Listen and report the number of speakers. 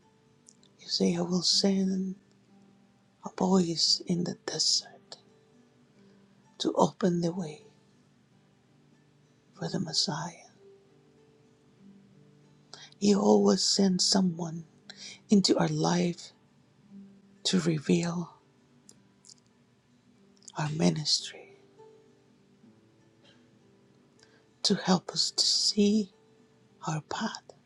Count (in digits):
1